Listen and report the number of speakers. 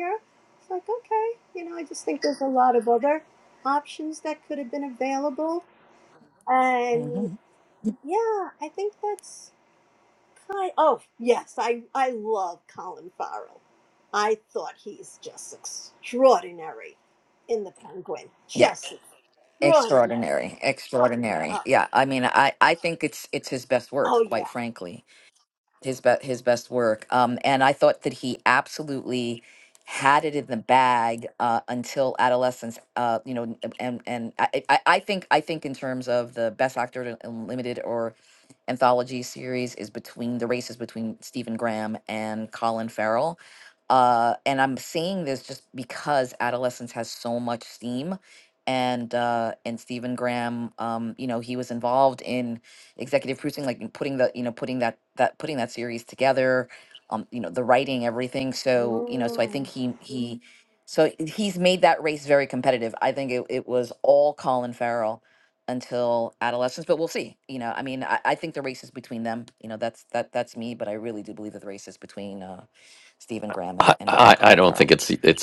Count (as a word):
three